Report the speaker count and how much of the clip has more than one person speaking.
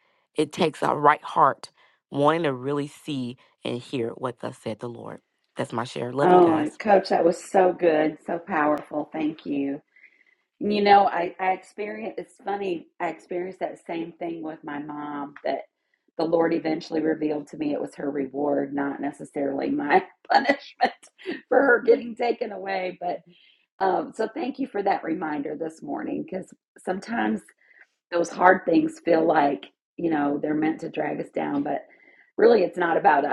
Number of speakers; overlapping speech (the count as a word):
two, about 1%